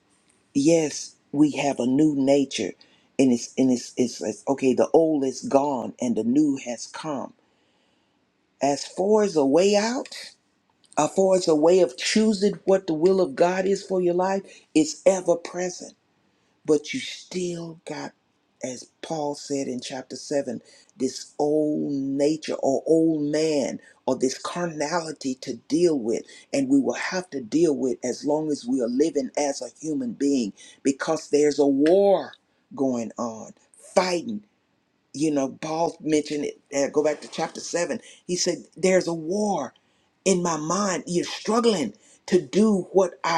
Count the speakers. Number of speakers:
1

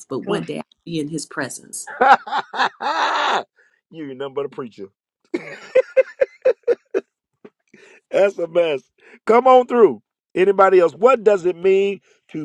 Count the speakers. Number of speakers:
2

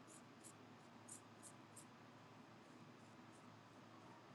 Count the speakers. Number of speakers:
0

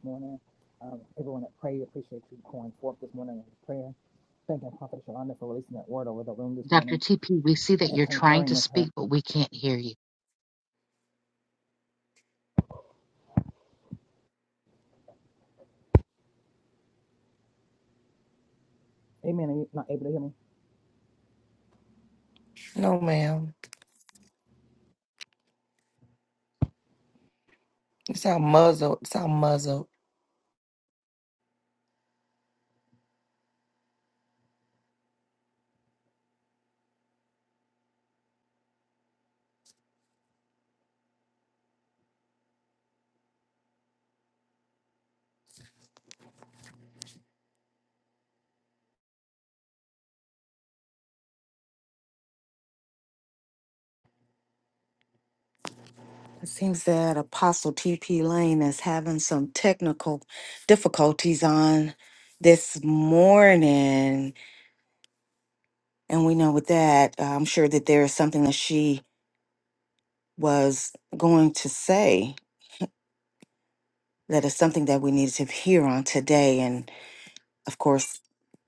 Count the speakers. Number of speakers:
4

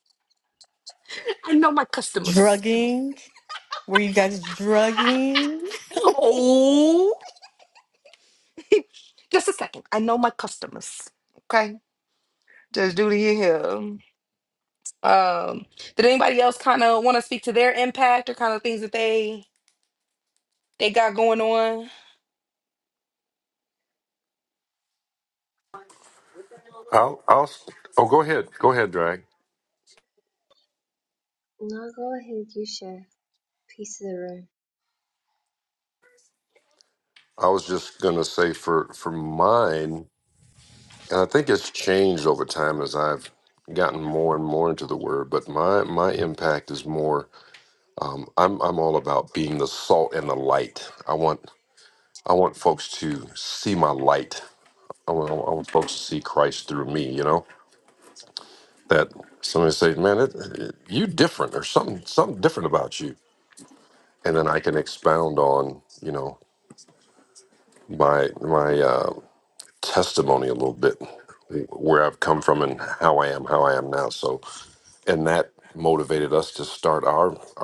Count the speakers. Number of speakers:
4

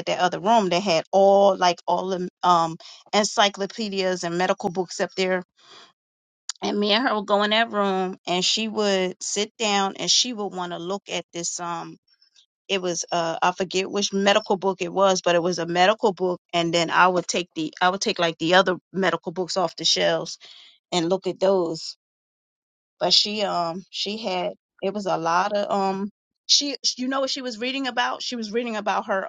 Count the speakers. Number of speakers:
1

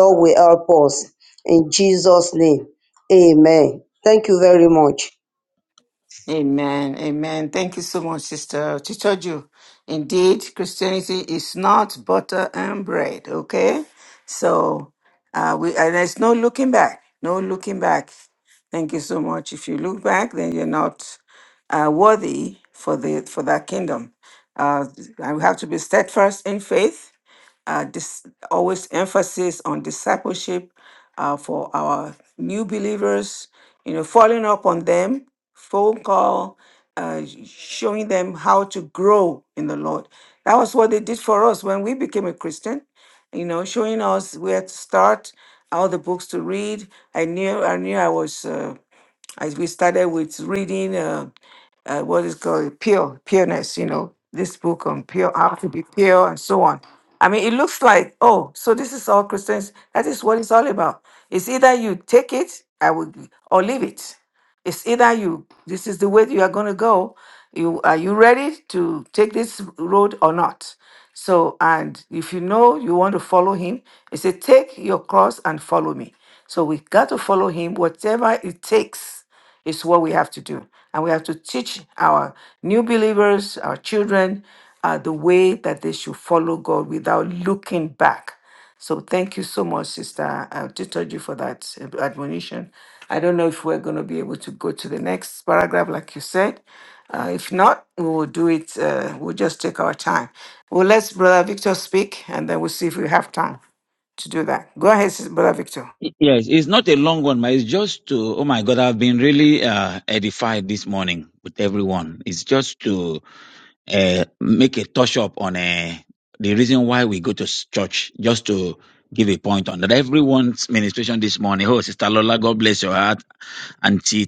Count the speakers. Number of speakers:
3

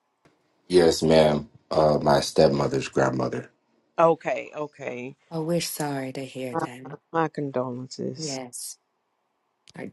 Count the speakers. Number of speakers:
3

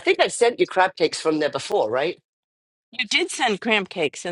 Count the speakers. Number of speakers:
2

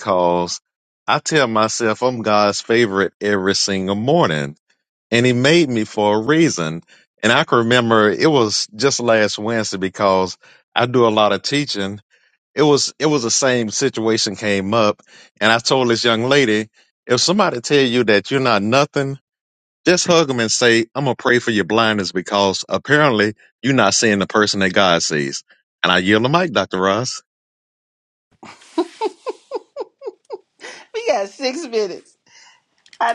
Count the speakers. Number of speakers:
2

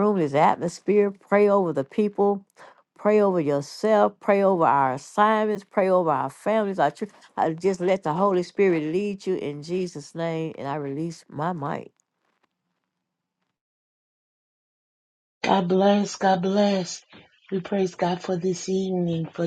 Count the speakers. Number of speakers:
2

